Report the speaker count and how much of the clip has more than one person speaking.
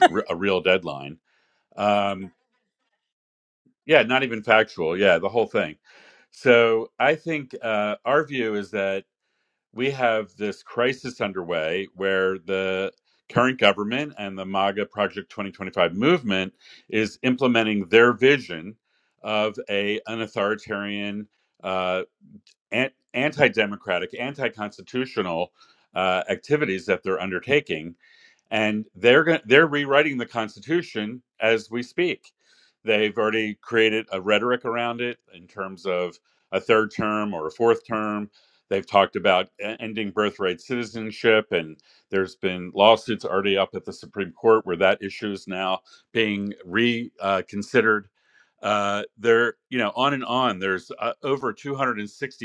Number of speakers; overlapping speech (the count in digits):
1, no overlap